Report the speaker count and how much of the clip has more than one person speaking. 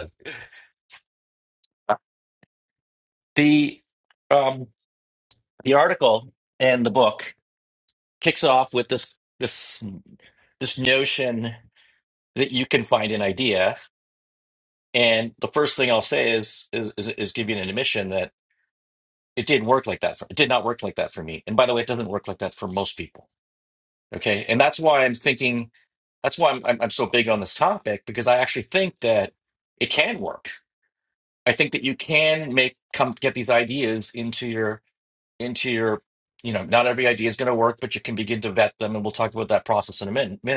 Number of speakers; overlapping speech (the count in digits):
1, no overlap